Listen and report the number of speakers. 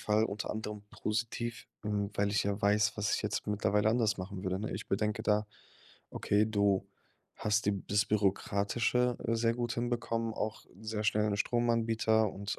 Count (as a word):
one